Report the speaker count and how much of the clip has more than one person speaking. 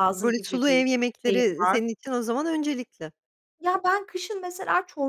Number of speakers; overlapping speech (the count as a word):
two, about 25%